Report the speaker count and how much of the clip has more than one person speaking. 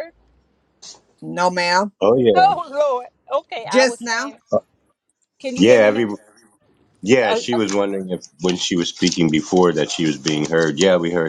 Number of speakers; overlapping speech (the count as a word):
three, about 15%